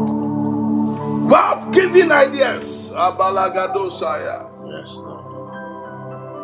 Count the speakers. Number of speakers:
2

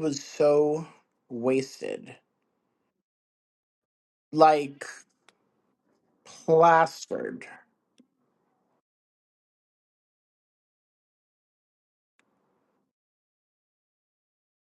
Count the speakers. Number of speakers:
1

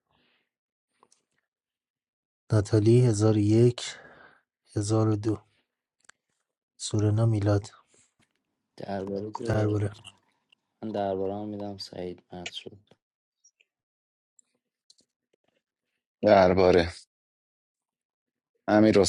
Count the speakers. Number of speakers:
3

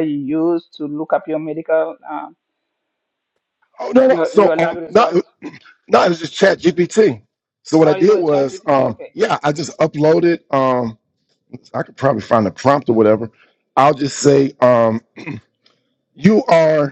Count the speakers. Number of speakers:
2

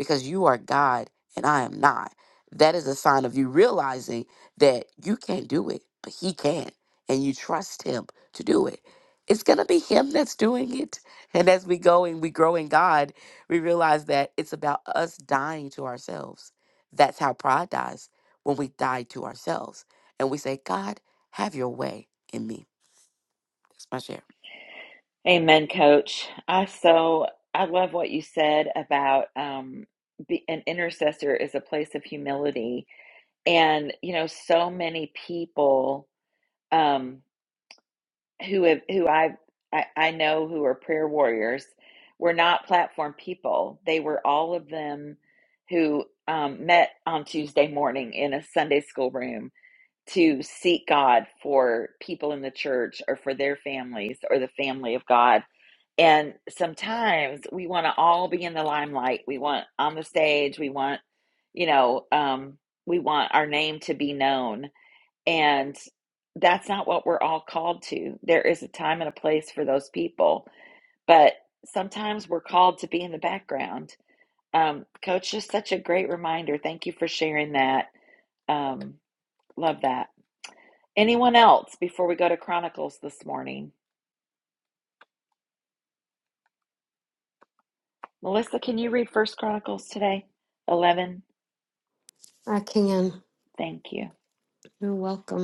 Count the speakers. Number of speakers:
3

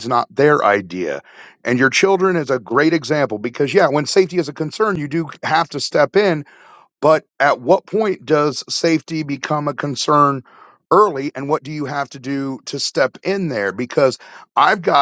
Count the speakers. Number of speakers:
1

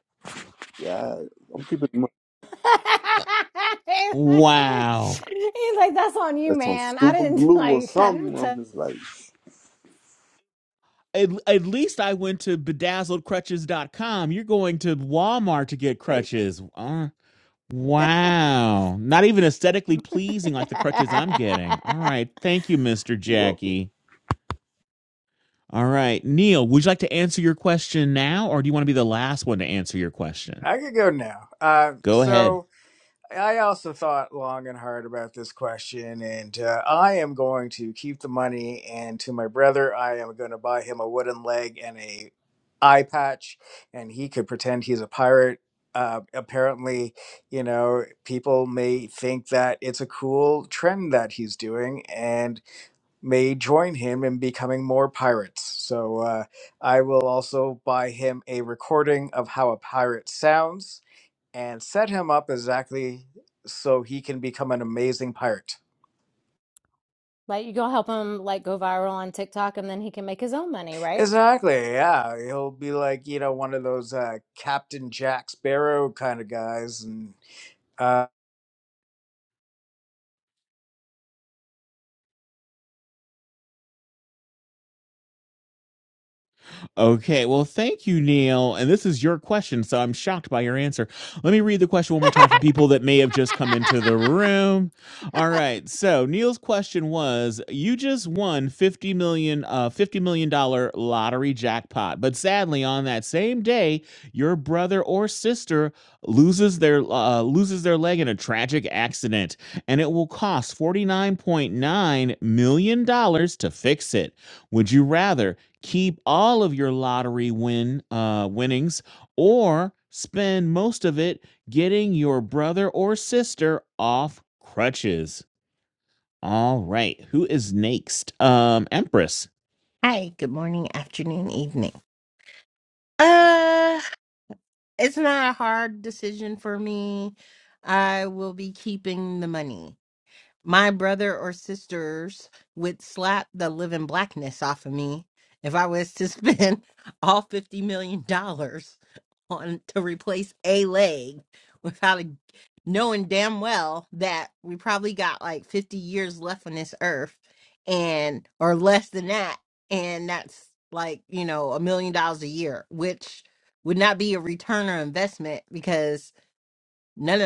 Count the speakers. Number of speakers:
5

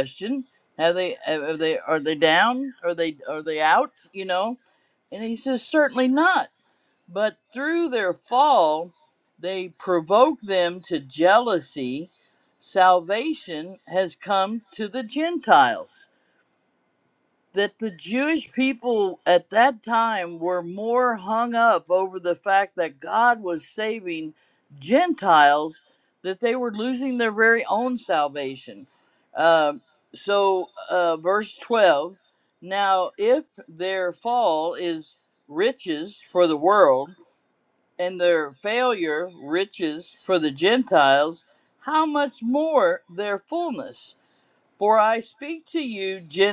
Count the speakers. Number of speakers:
1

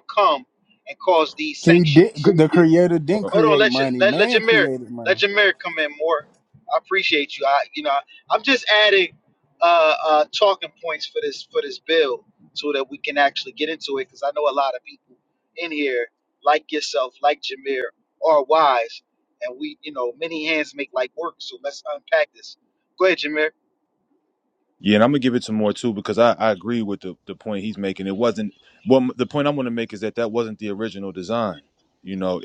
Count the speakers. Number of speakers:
3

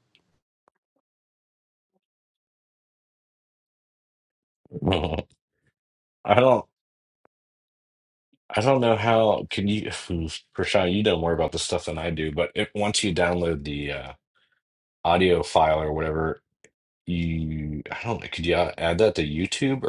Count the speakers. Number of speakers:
1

